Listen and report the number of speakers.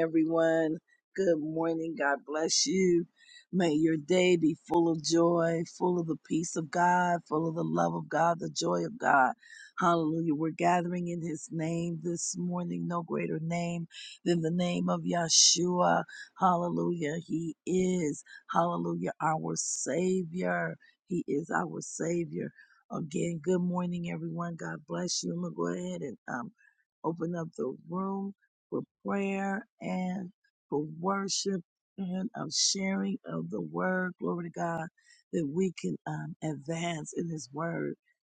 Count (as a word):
one